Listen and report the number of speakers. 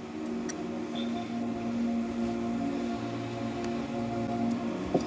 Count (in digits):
0